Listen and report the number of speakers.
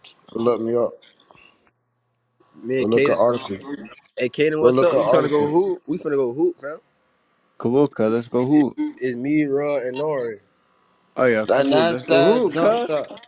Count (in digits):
3